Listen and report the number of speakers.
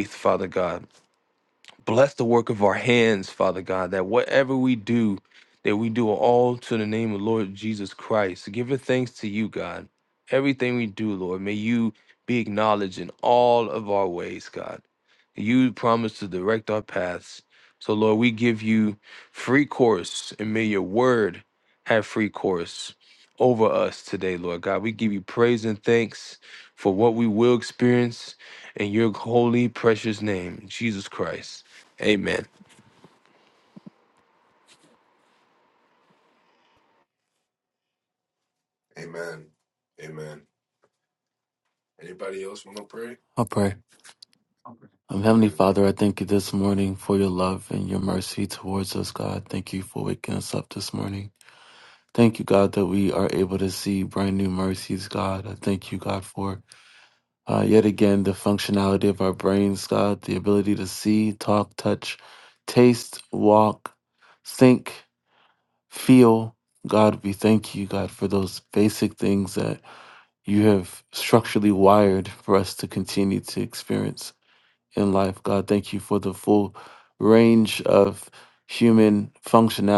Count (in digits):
3